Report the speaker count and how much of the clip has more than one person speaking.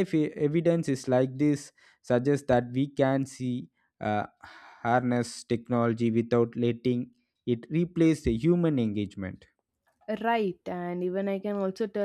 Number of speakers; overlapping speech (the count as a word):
two, no overlap